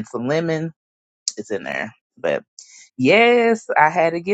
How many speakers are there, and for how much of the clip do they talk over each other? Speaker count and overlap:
1, no overlap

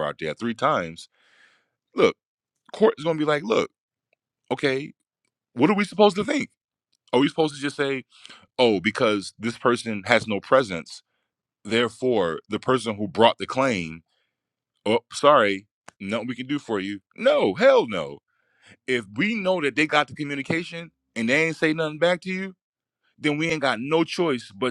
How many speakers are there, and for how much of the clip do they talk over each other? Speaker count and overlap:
1, no overlap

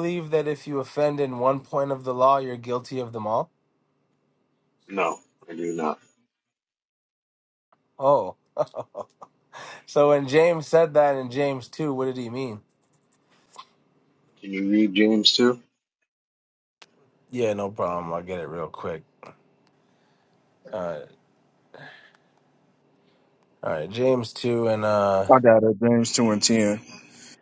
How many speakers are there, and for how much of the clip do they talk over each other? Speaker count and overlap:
3, under 1%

